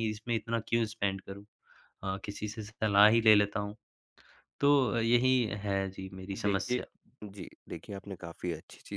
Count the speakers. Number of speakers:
2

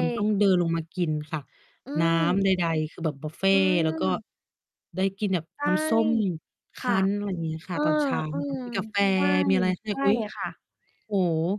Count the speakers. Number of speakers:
2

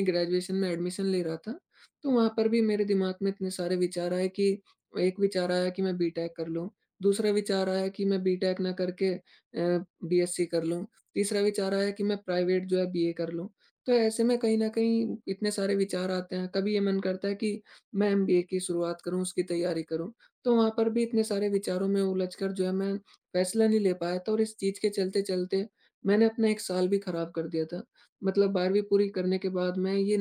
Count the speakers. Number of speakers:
1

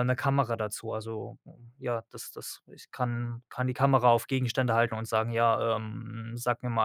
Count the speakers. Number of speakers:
1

